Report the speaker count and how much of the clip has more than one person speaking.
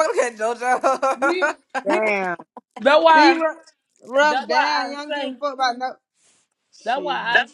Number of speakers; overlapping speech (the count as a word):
three, about 28%